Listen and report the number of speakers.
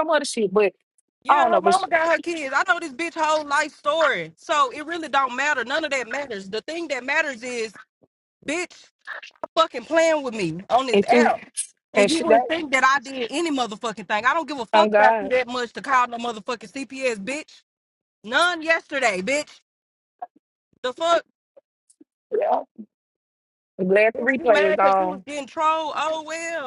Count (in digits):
2